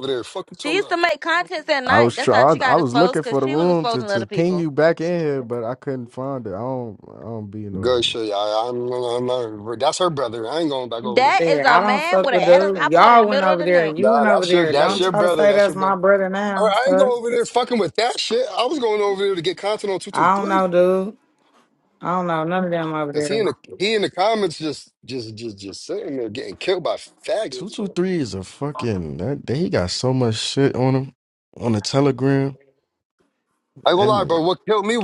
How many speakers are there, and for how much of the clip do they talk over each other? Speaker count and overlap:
4, about 30%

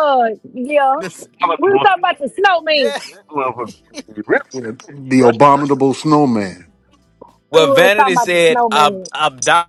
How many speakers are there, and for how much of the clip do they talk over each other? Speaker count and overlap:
4, about 23%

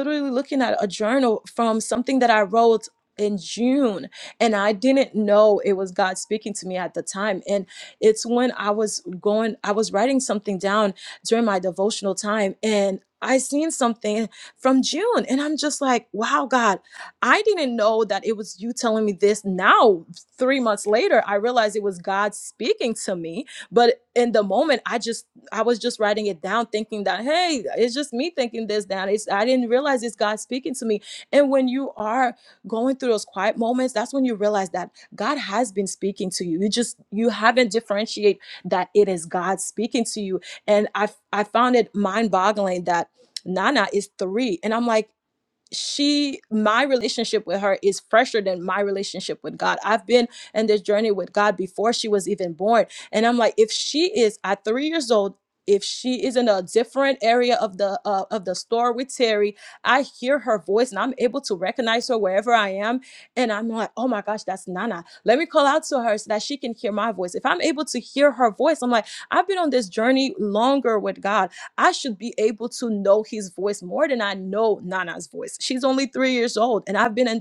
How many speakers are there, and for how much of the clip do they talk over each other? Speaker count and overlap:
1, no overlap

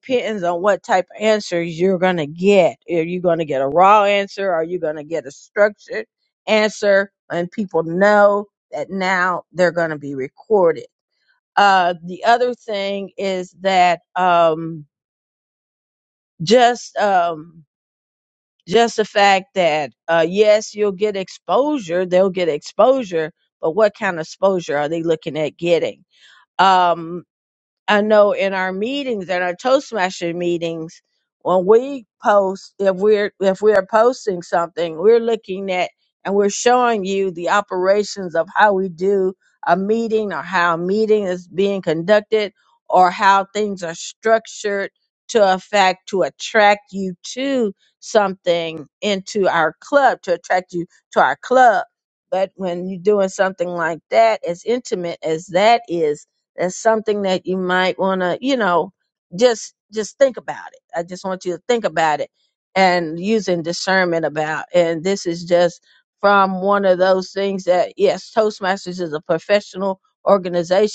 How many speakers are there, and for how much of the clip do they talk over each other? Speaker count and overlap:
1, no overlap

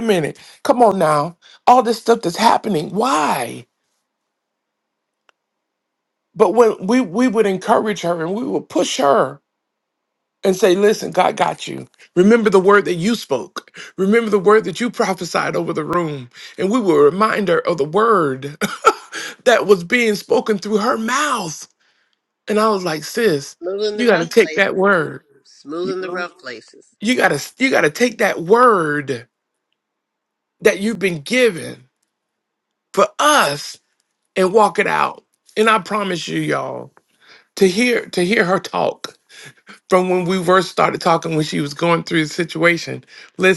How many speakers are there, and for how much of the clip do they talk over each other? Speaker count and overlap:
2, about 2%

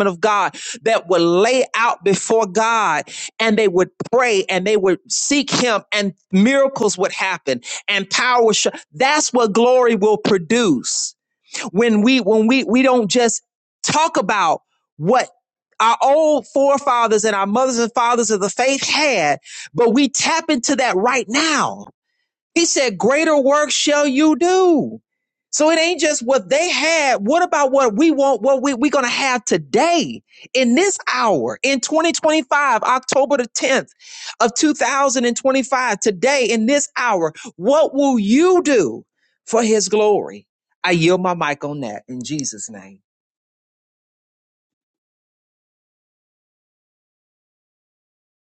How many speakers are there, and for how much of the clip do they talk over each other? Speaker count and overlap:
1, no overlap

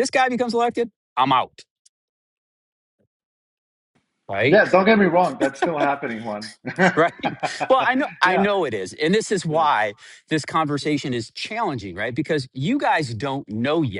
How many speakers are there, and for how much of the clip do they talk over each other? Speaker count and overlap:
2, about 2%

